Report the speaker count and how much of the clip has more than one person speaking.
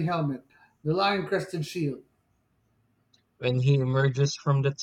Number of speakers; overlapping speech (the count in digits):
2, no overlap